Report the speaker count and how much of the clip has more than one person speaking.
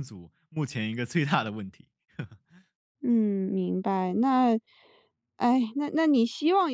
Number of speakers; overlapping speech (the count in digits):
2, no overlap